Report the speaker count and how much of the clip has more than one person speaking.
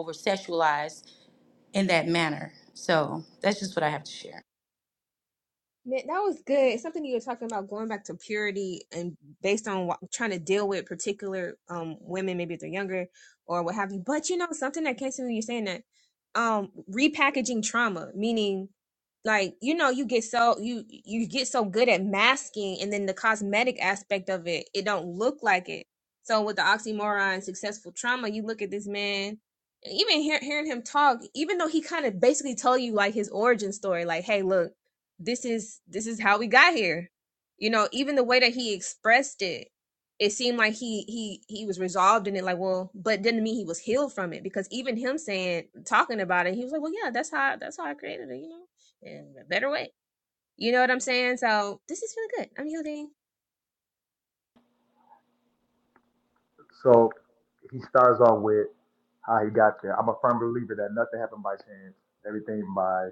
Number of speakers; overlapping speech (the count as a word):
three, no overlap